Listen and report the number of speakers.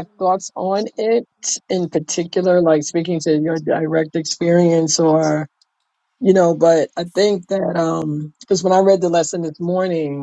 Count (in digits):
1